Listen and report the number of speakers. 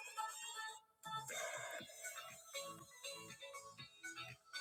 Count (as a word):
zero